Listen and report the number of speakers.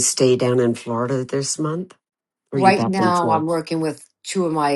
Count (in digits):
2